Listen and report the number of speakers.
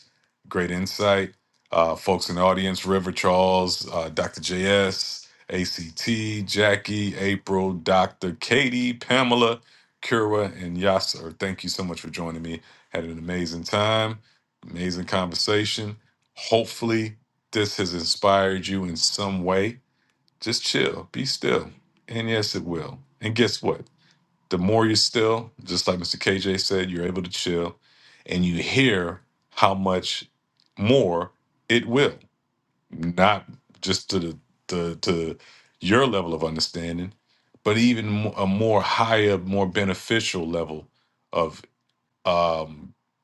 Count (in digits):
1